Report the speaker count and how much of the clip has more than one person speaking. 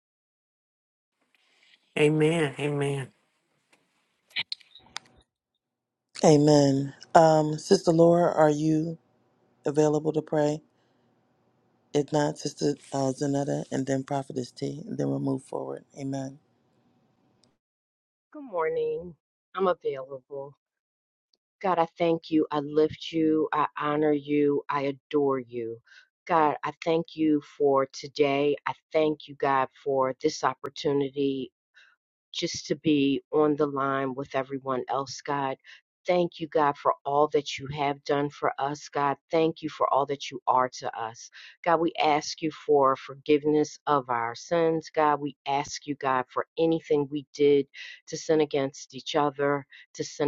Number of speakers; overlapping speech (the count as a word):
three, no overlap